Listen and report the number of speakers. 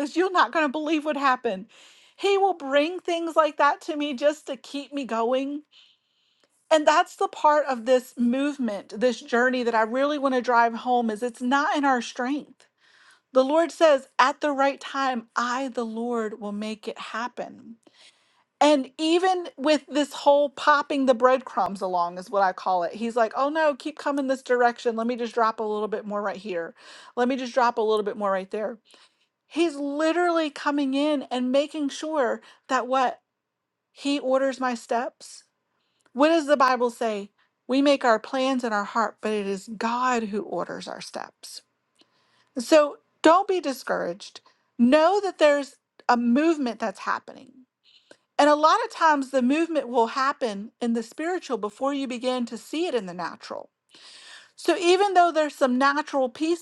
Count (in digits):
1